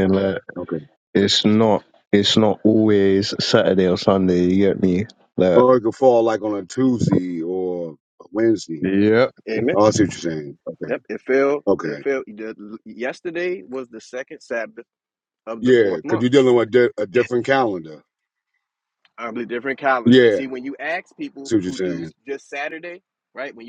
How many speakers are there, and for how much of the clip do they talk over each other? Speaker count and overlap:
three, about 9%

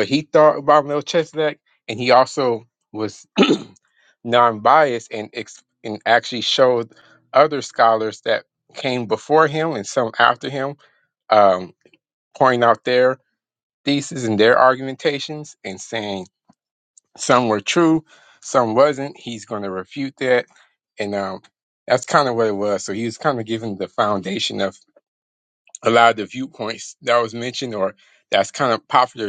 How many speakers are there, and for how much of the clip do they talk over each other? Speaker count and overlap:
one, no overlap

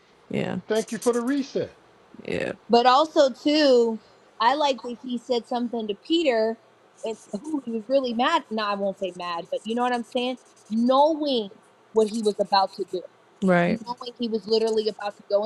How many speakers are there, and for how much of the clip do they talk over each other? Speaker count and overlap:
three, about 1%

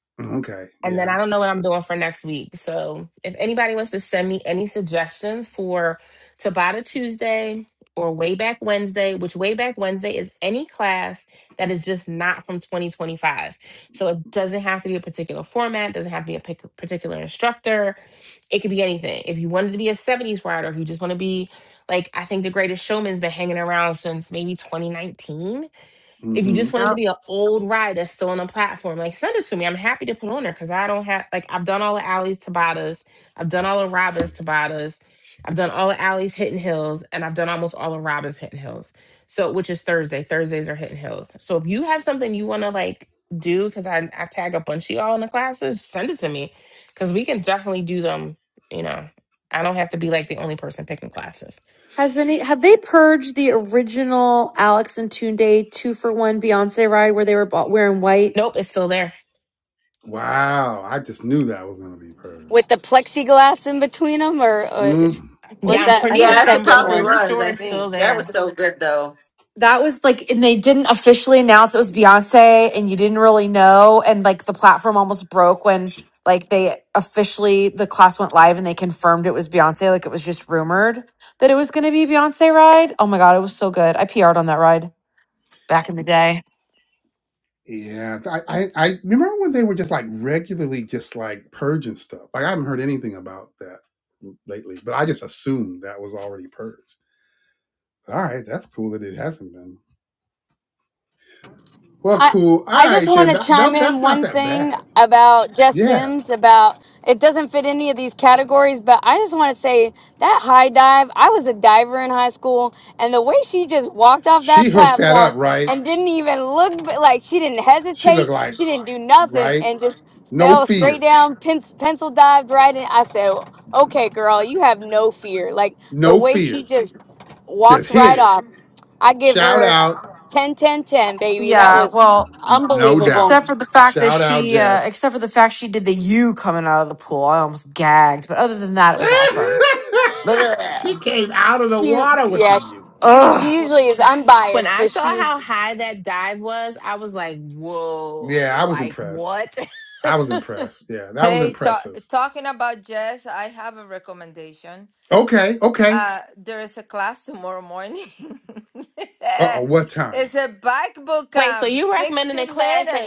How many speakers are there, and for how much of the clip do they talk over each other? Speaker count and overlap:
six, about 11%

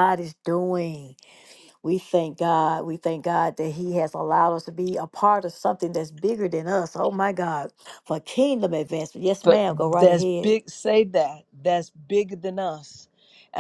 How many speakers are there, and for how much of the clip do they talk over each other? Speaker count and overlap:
two, about 6%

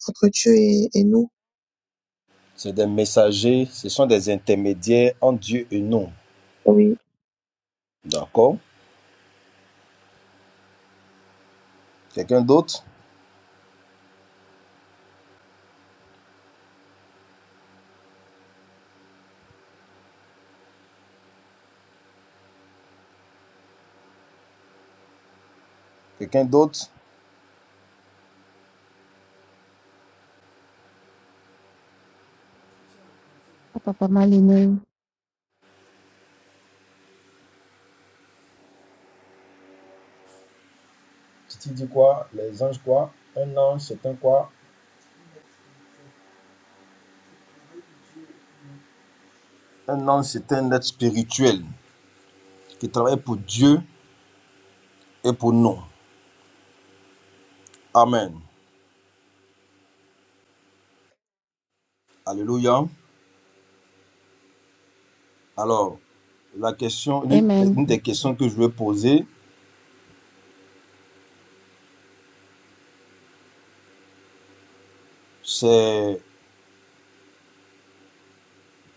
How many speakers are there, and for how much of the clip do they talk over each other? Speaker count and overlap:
three, about 1%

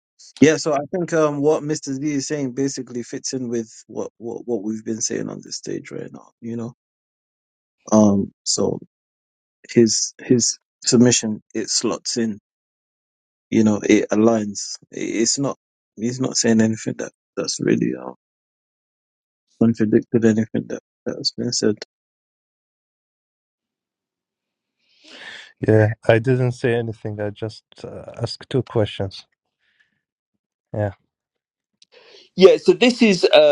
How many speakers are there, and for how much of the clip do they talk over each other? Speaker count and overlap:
three, no overlap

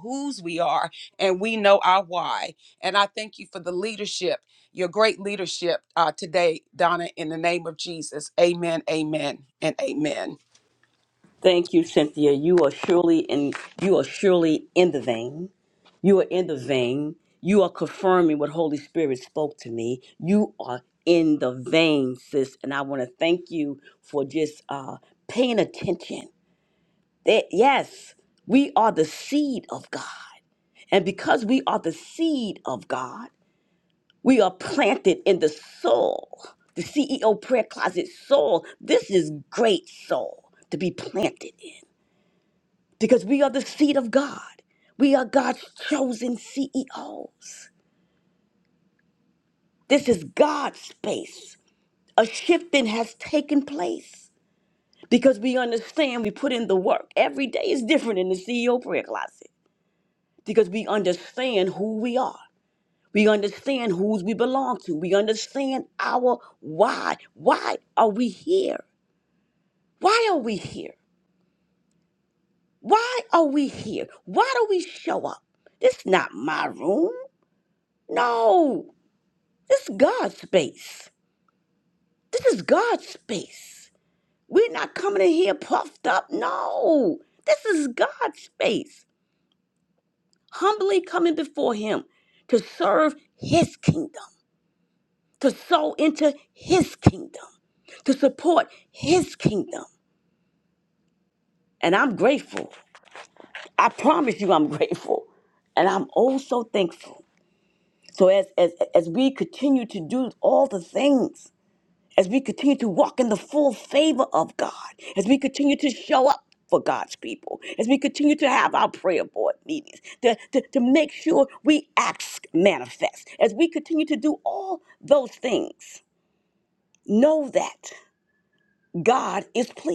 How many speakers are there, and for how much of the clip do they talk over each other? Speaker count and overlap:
two, no overlap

